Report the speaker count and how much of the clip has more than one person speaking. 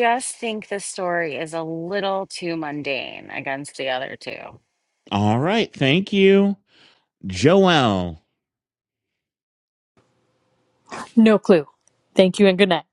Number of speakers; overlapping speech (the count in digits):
3, no overlap